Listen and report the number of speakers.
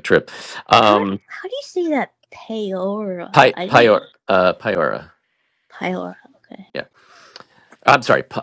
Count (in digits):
2